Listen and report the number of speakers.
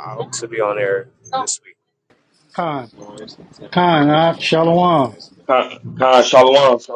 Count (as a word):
three